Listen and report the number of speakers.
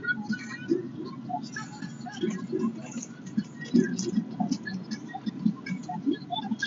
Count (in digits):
0